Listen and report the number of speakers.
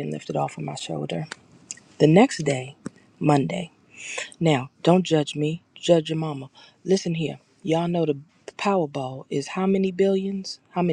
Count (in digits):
1